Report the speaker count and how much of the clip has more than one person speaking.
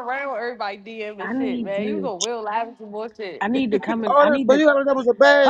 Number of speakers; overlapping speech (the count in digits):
3, about 33%